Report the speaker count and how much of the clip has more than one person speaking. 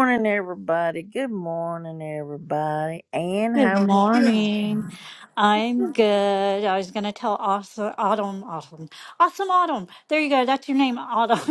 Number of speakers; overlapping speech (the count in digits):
2, about 8%